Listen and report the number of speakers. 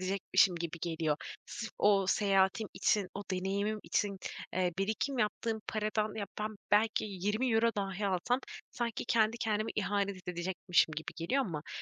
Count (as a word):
one